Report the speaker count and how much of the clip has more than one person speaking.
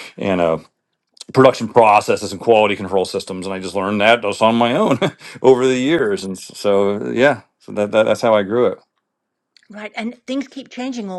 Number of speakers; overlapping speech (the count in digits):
2, no overlap